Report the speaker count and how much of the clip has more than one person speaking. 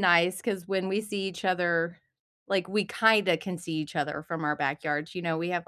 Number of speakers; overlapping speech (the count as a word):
one, no overlap